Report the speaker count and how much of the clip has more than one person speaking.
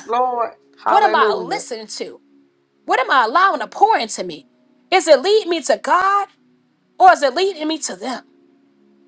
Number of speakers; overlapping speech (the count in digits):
2, about 8%